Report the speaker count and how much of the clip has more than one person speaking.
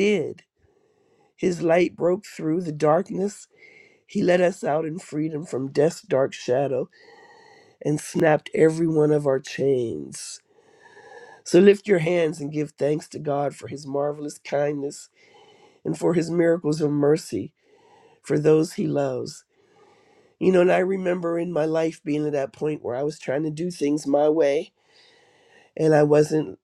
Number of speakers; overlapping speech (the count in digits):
1, no overlap